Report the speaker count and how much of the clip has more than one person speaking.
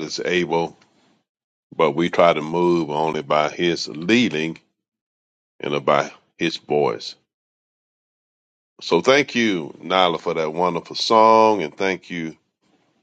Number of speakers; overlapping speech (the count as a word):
one, no overlap